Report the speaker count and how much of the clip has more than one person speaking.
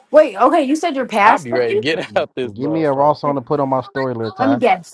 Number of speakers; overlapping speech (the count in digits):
3, about 29%